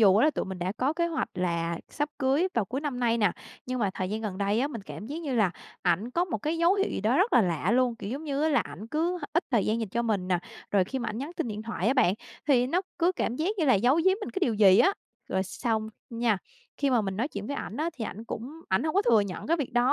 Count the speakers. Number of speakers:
1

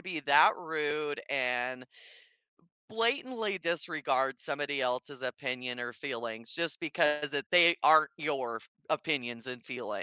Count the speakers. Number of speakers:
1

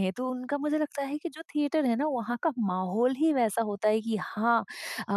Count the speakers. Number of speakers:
1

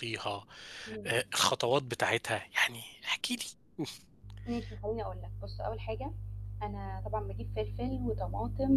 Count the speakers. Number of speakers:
2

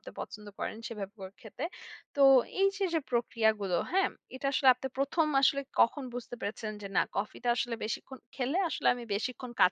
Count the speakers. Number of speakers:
1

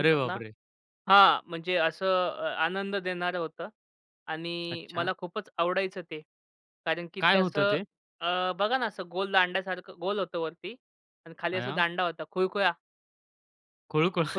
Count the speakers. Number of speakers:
2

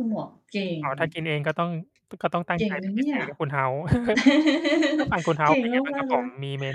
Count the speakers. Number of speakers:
2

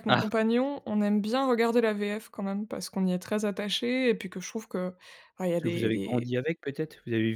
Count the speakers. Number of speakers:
2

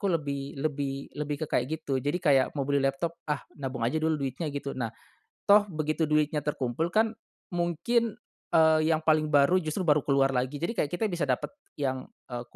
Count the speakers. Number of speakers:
1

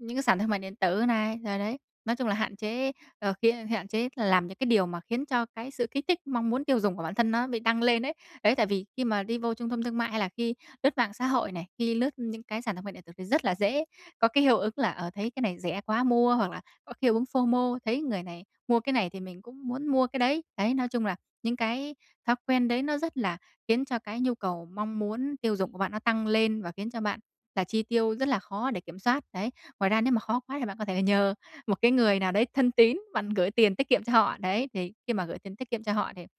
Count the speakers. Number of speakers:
1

